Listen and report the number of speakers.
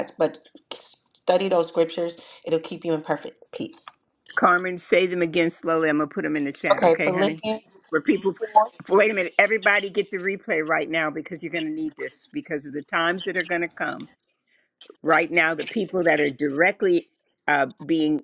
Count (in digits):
2